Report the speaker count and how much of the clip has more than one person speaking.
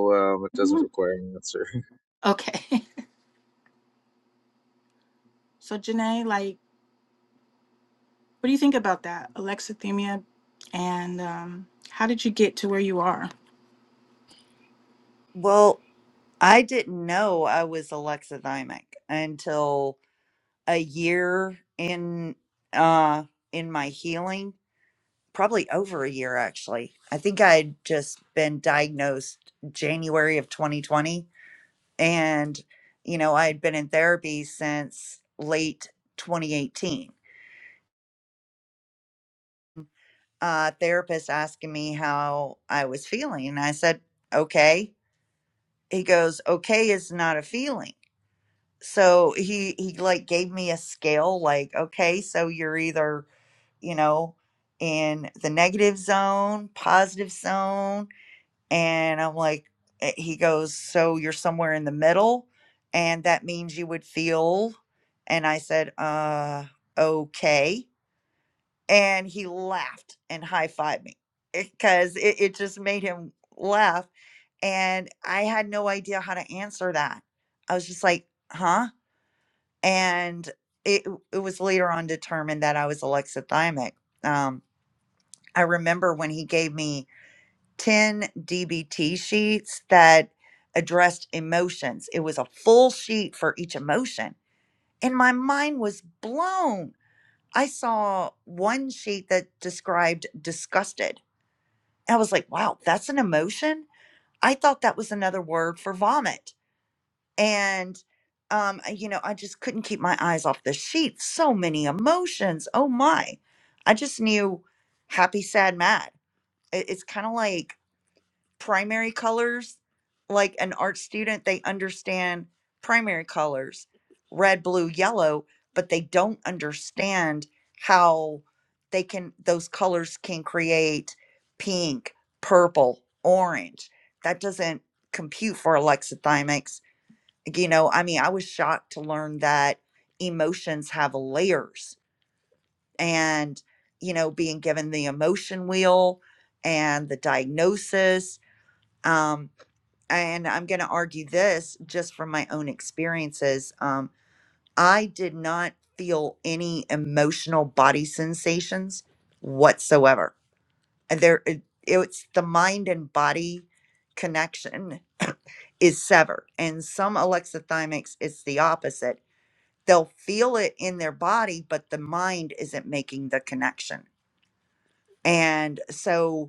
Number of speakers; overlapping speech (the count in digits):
3, no overlap